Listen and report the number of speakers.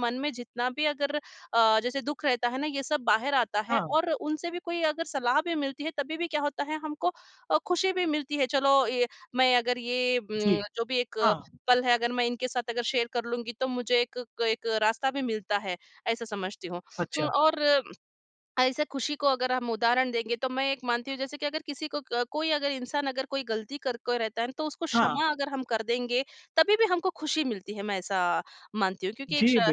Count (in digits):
2